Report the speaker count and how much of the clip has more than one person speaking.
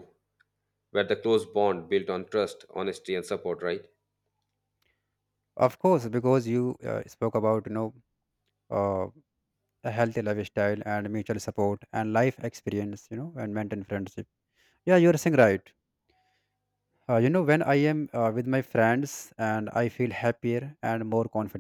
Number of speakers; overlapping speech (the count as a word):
two, no overlap